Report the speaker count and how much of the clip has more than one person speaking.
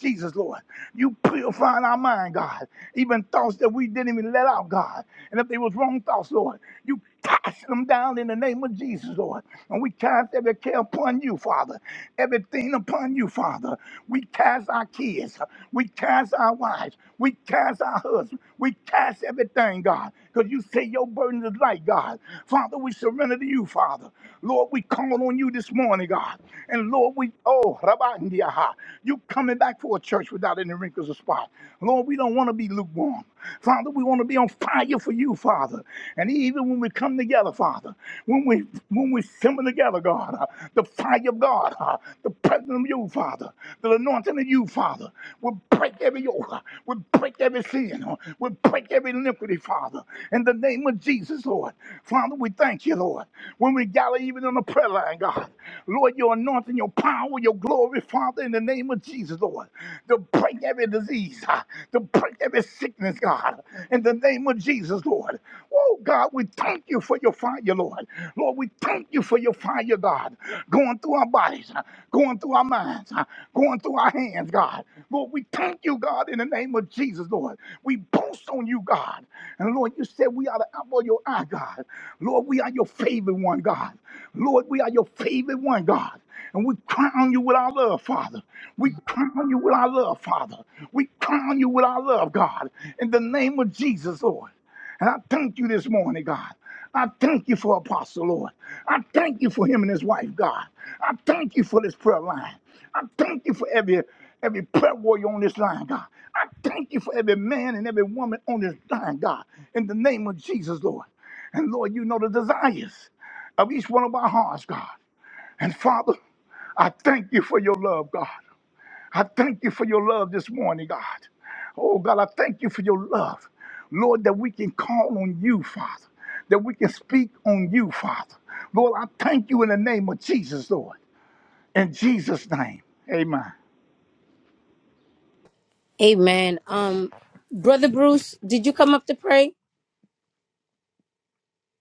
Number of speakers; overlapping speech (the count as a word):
two, no overlap